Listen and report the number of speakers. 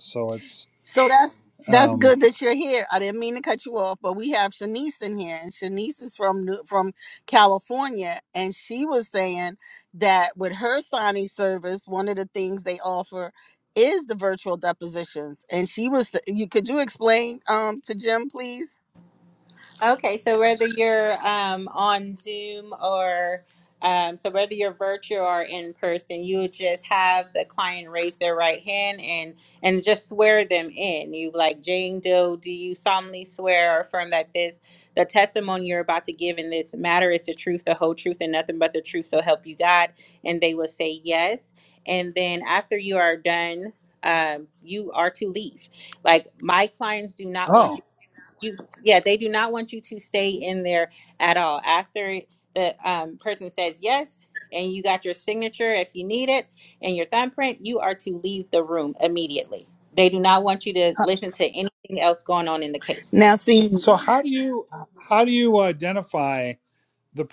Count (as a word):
three